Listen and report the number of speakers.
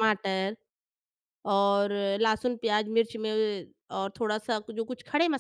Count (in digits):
1